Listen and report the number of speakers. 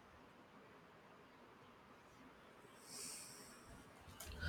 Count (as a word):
zero